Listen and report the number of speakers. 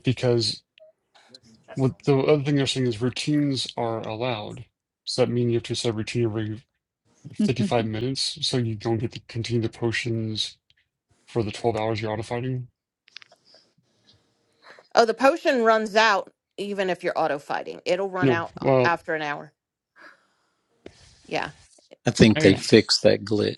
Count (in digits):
3